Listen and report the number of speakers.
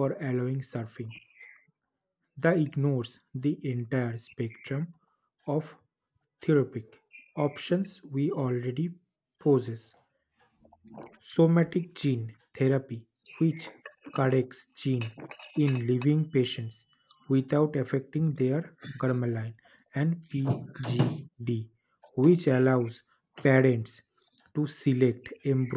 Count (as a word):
one